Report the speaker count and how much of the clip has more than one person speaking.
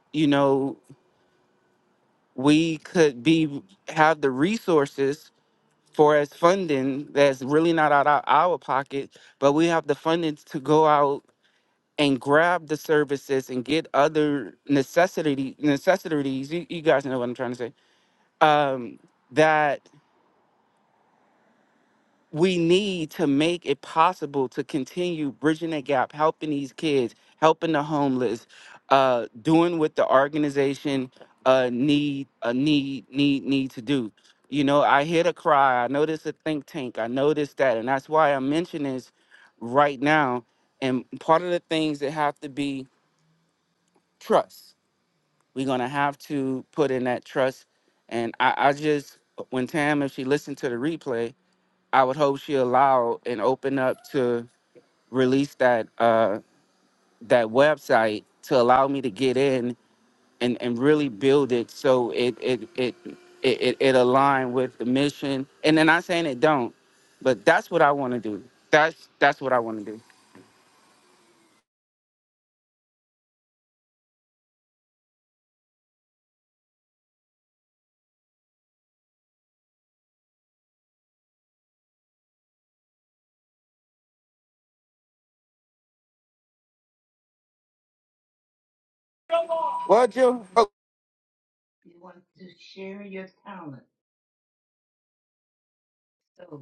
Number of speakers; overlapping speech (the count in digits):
2, no overlap